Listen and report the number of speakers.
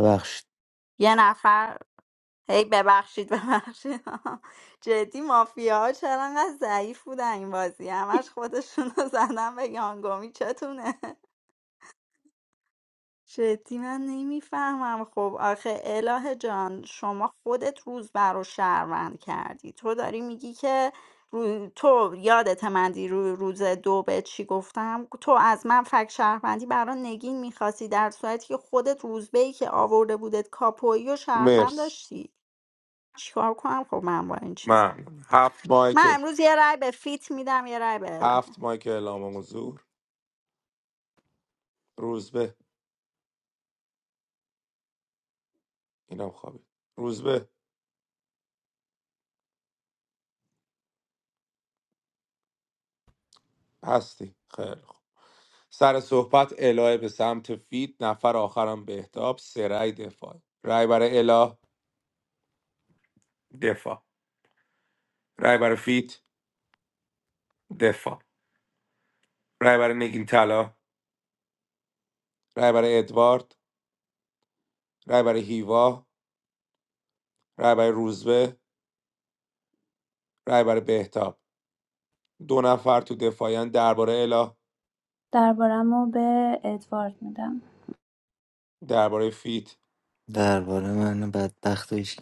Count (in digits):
4